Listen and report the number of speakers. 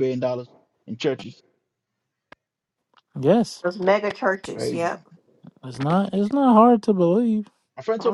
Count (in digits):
3